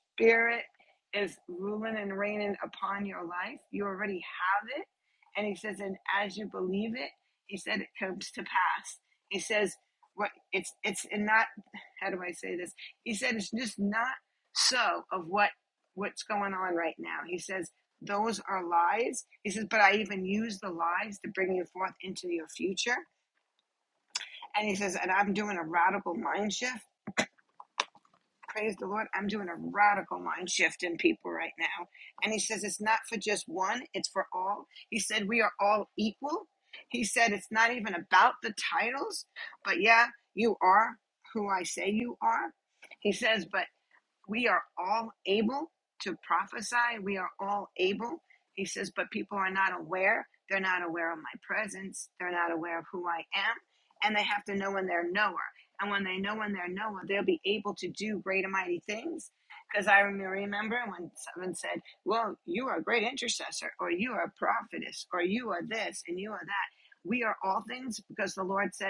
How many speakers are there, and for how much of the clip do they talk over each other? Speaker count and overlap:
1, no overlap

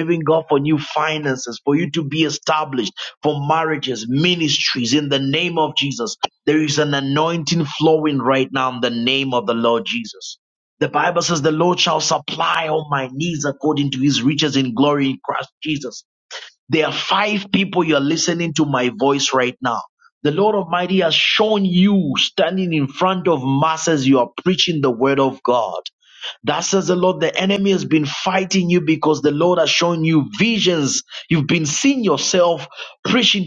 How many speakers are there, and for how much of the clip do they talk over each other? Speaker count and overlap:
1, no overlap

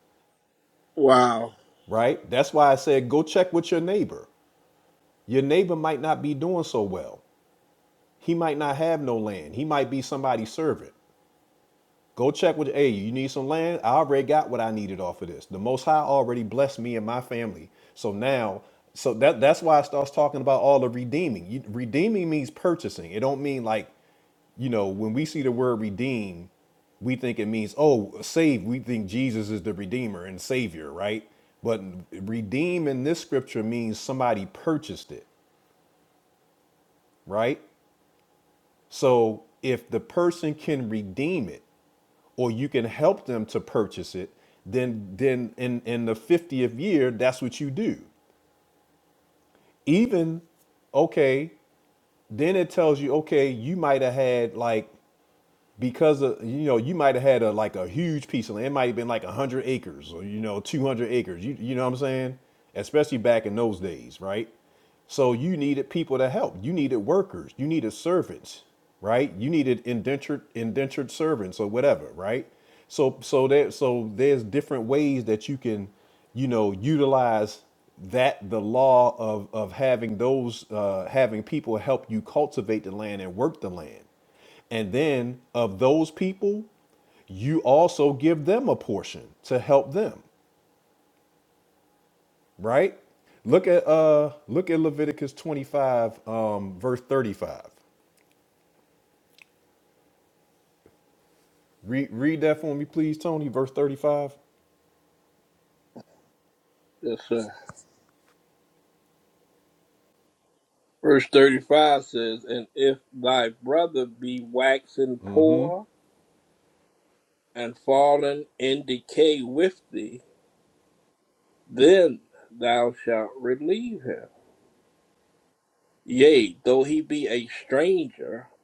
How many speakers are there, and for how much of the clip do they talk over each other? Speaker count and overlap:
2, no overlap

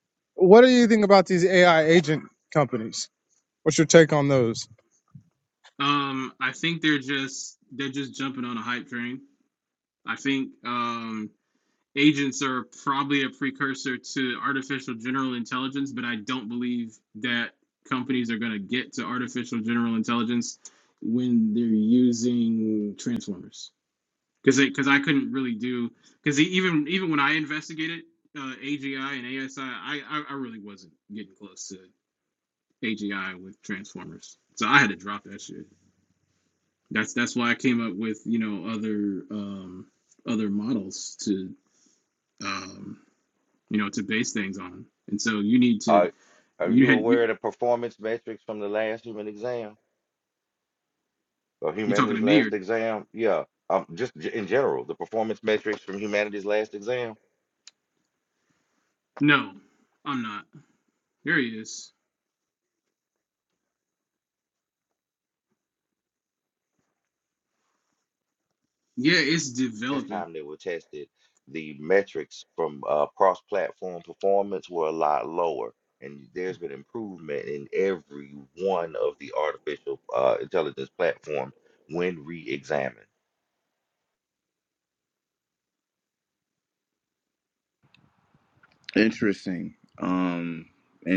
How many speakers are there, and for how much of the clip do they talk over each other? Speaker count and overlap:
4, about 2%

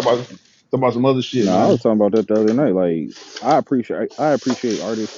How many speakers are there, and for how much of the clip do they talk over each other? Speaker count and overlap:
2, about 7%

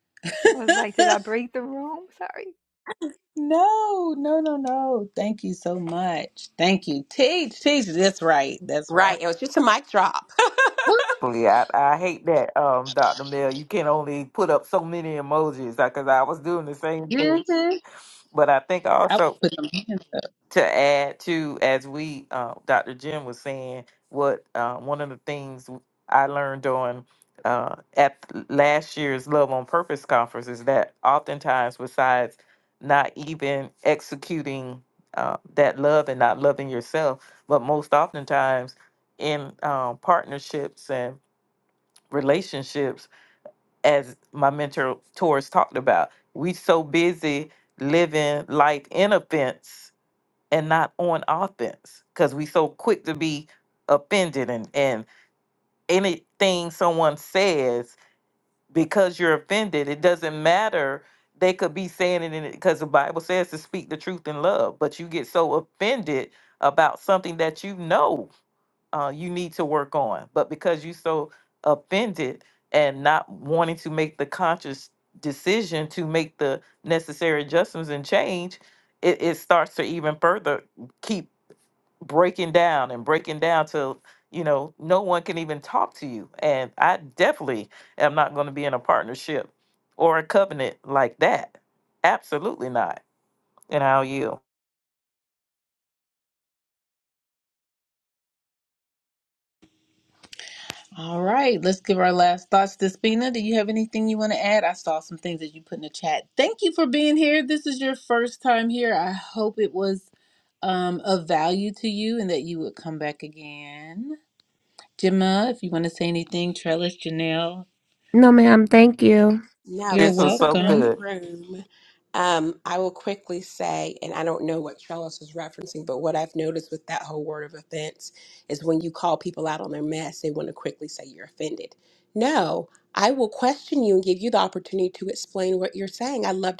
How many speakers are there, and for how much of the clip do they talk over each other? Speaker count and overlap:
5, about 2%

